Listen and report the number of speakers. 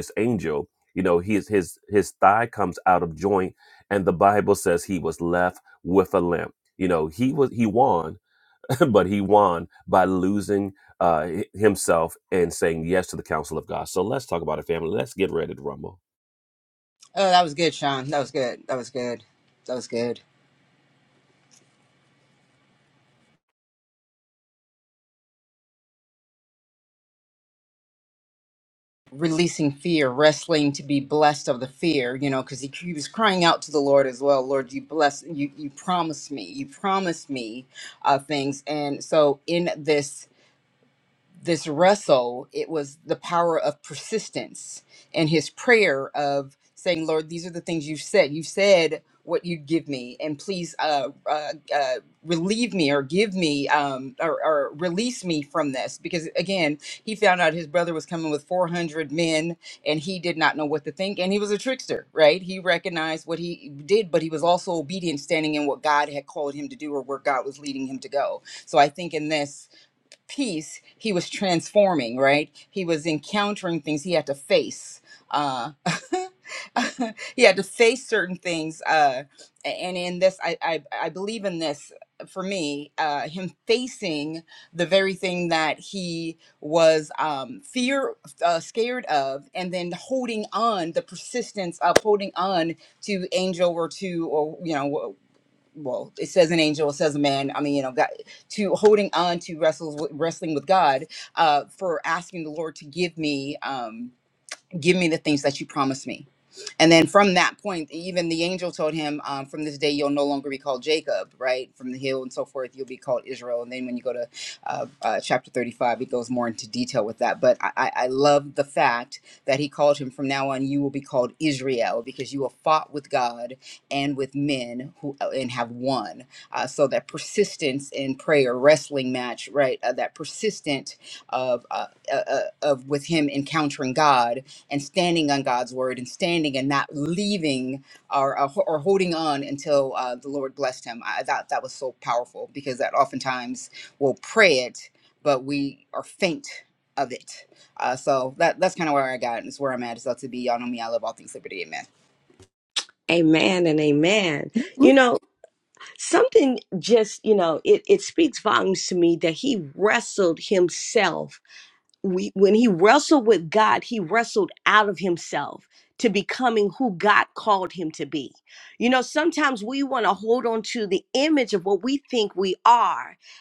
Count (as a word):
three